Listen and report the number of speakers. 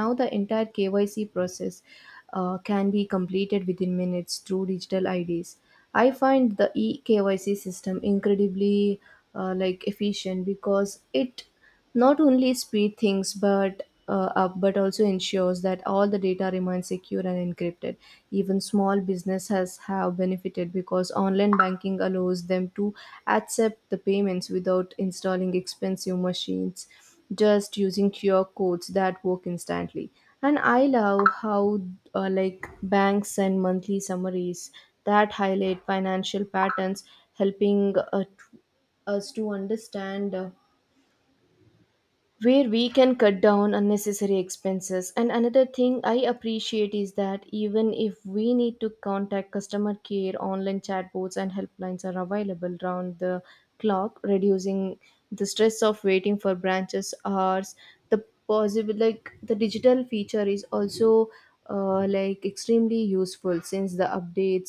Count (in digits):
1